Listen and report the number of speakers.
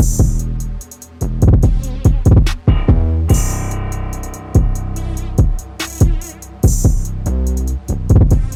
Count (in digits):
0